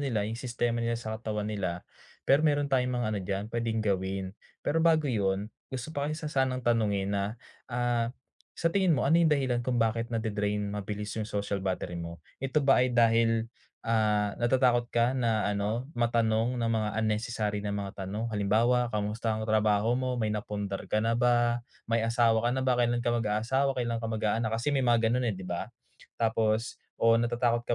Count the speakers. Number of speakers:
1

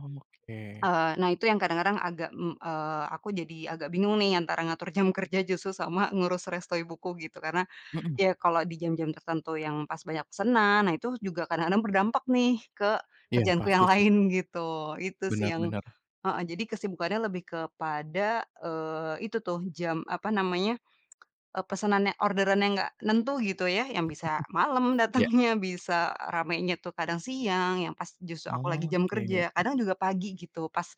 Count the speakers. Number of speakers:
2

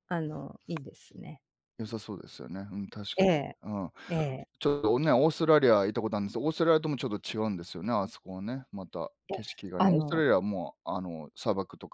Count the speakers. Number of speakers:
2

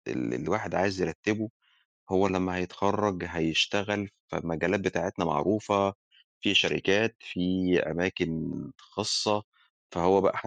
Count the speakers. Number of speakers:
1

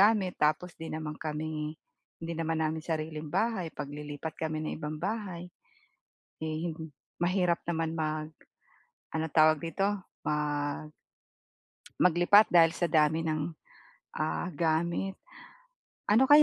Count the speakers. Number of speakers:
1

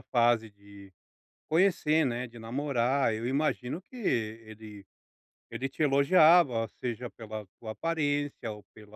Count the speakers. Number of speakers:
1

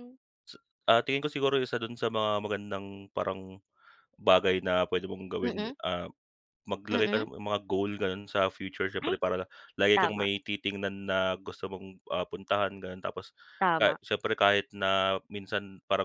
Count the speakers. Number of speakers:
2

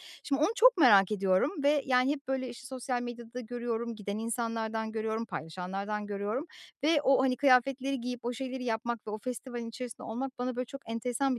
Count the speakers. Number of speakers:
1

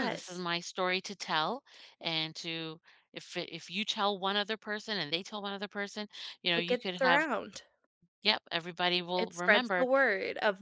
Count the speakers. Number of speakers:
2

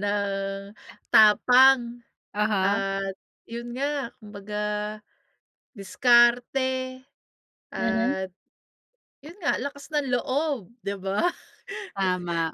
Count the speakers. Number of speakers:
2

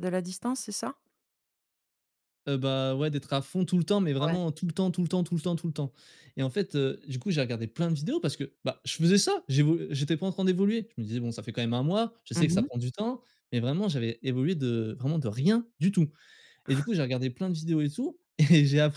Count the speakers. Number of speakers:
2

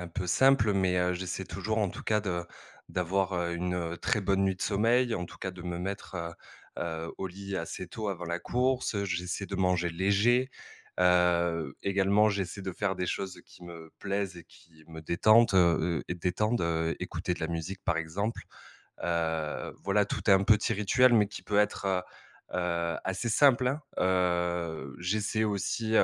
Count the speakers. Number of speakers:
1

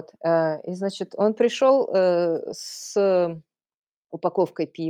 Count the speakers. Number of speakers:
1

